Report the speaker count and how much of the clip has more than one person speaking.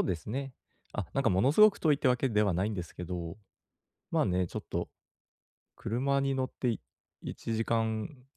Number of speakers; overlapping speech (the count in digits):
1, no overlap